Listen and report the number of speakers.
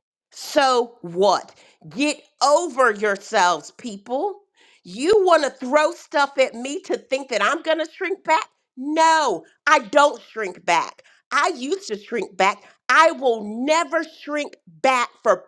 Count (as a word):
one